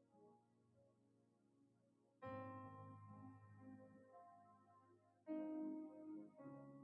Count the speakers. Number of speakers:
0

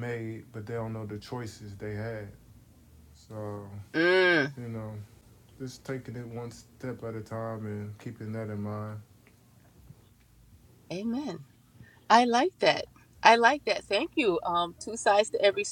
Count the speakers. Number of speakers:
2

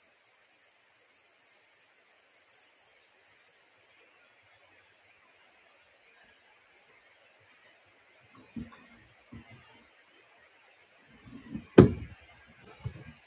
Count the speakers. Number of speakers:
0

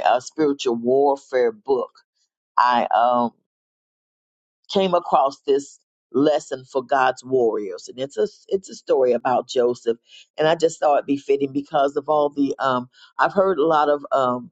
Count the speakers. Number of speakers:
1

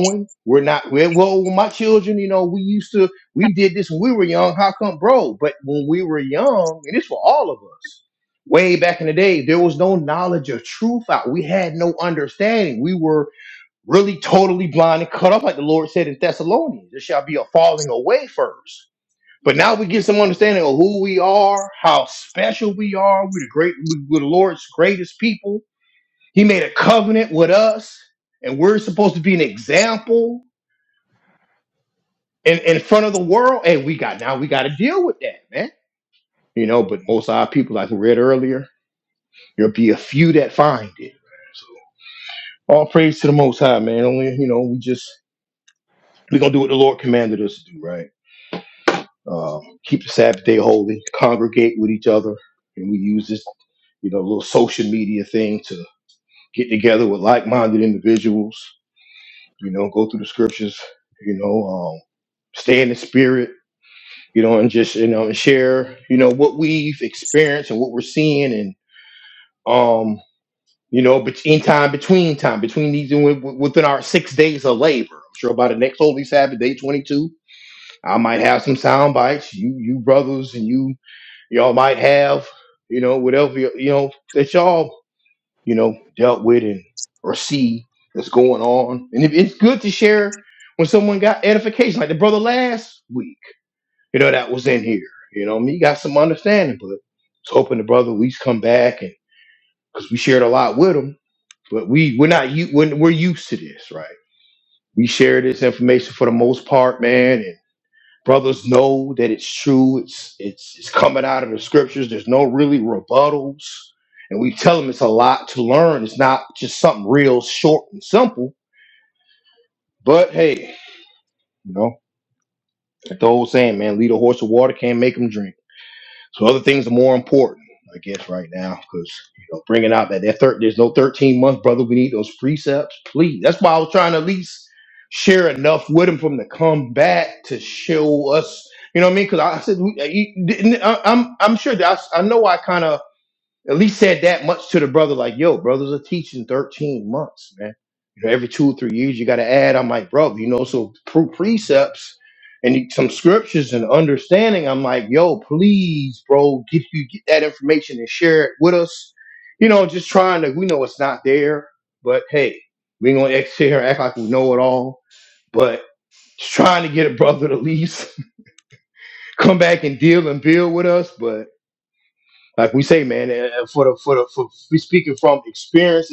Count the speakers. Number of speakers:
1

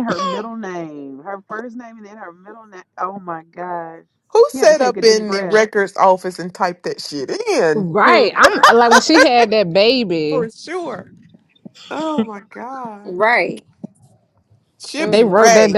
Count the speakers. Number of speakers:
4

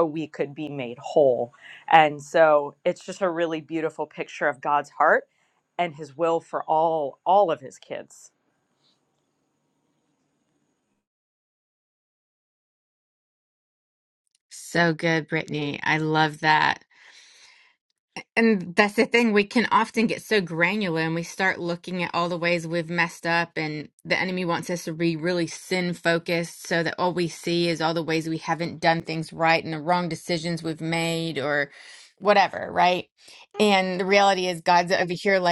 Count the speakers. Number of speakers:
2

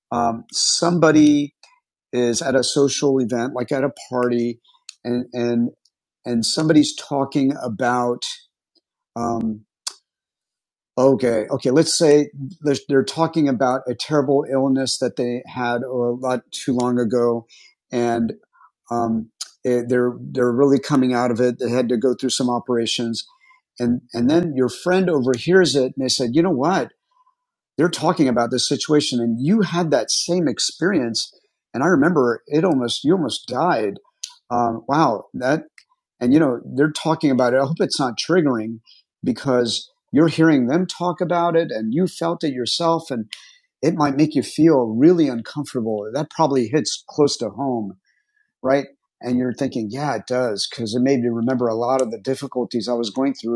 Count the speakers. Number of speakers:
1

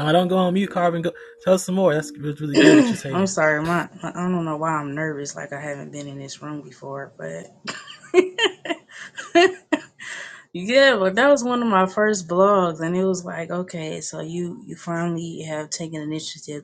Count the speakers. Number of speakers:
2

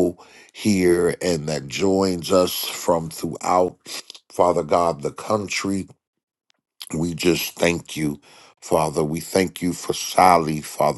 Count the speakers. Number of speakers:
1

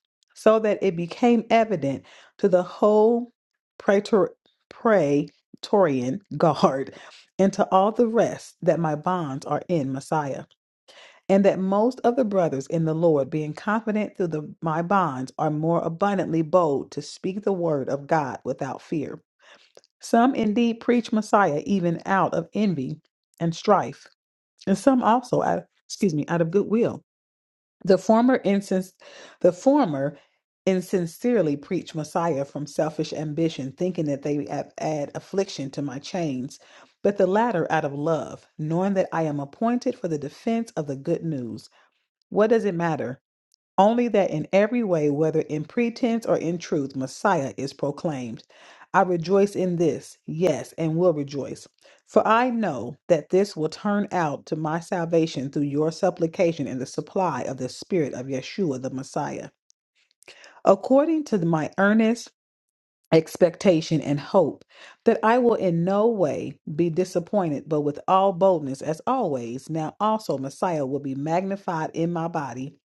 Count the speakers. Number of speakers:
1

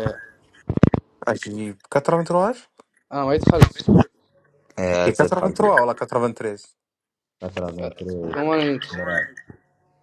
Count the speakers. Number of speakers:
3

